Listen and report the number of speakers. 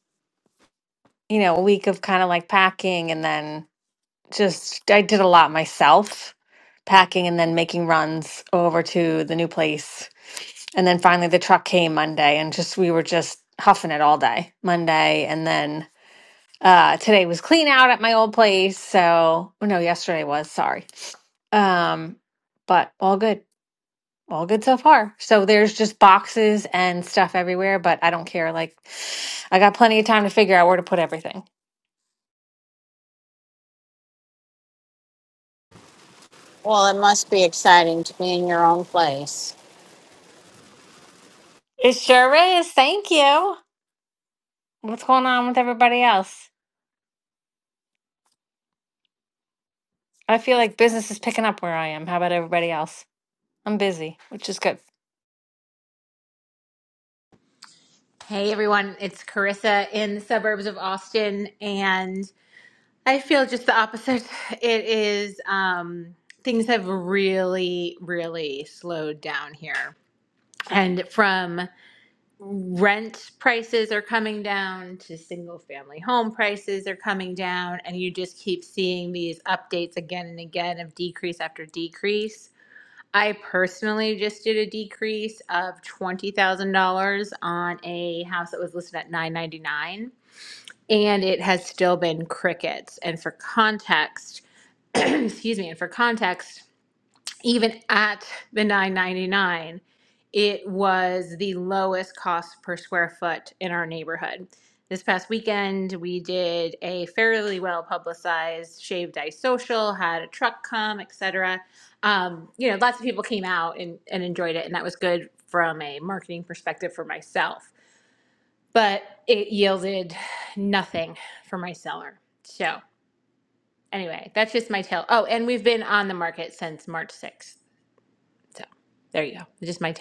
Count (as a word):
three